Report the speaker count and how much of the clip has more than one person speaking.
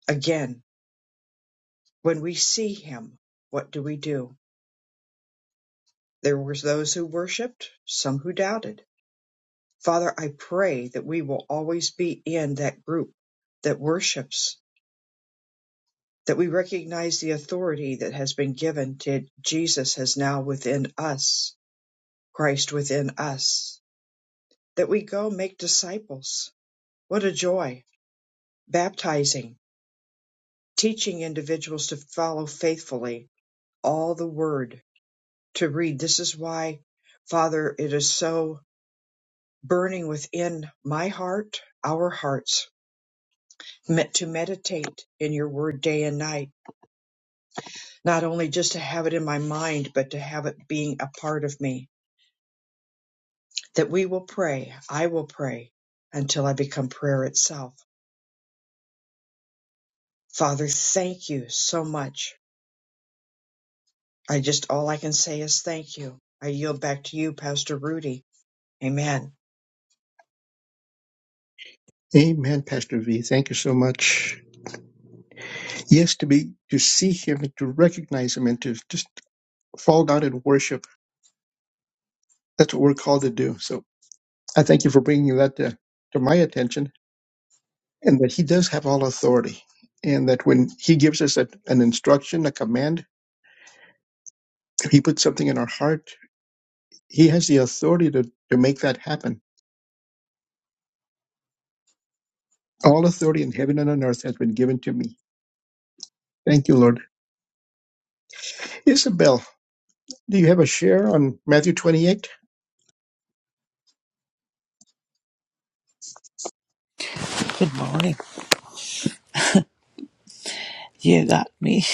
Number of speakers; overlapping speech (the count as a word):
three, no overlap